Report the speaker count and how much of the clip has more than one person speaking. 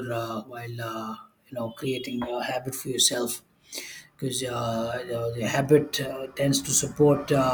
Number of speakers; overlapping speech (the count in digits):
1, no overlap